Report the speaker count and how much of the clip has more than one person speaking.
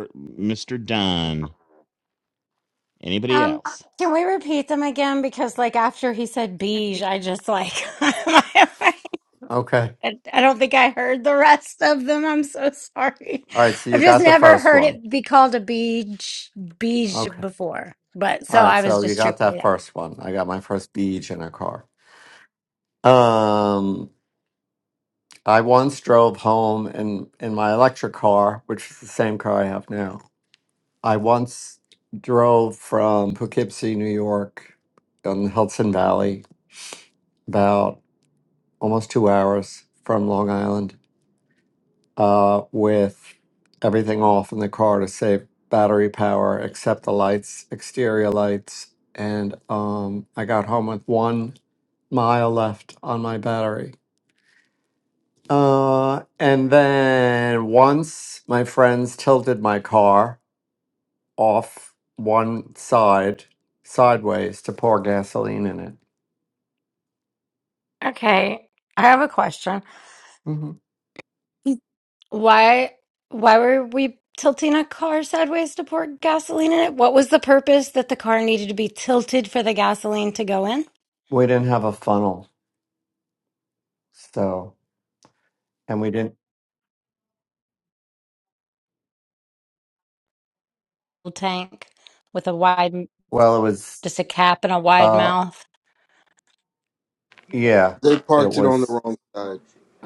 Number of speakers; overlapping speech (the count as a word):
four, about 4%